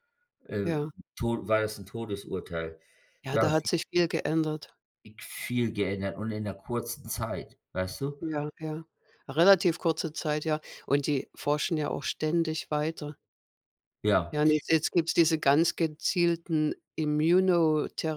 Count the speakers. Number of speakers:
two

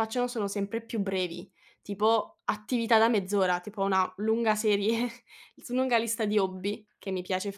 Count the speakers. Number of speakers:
one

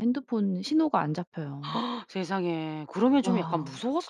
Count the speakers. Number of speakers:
two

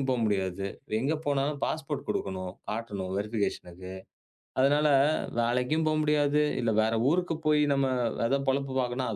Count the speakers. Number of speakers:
one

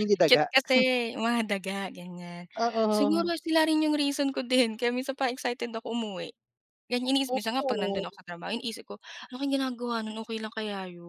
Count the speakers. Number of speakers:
two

